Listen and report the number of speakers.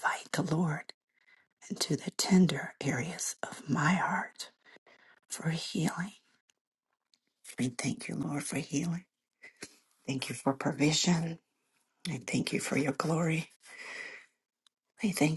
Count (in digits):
1